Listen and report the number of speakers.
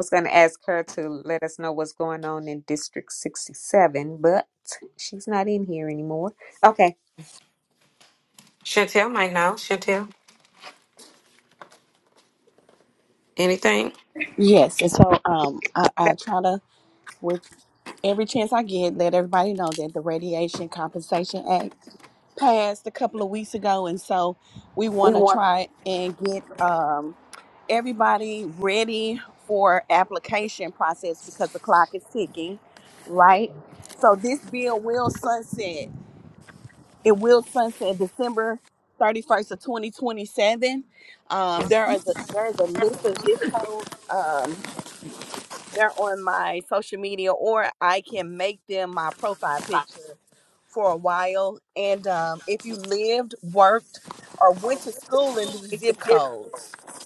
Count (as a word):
three